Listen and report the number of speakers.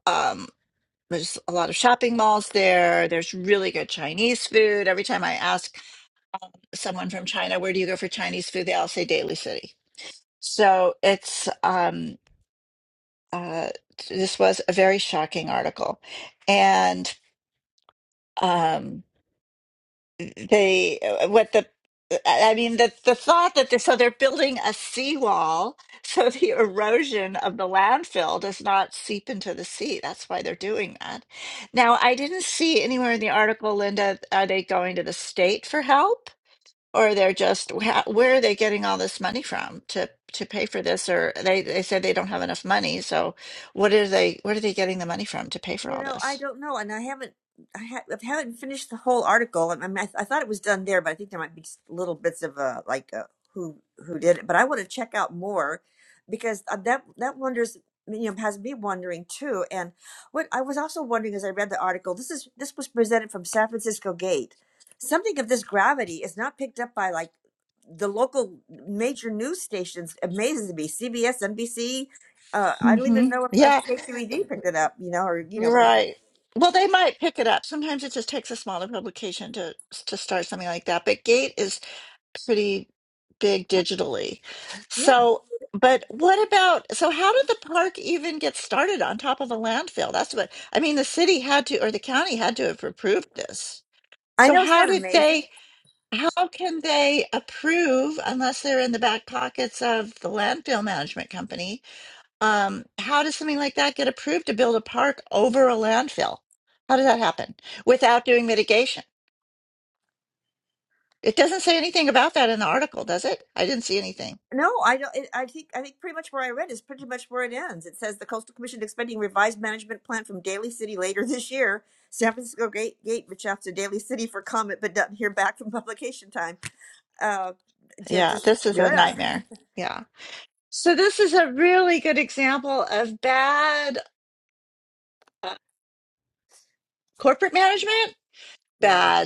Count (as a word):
two